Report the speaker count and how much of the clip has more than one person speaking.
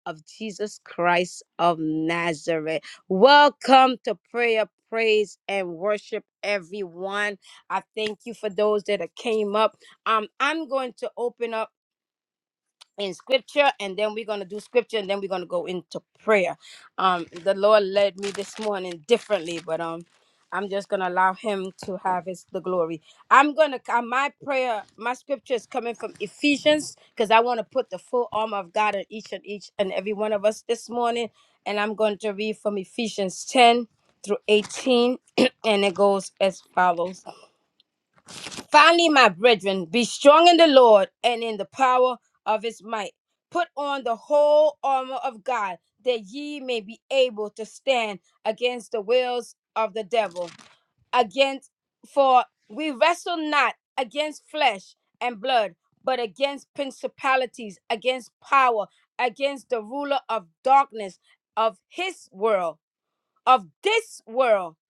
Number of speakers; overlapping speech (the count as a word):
one, no overlap